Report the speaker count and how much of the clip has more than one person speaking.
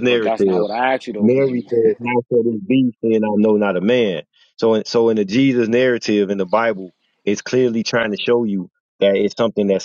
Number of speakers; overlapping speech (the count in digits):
2, about 11%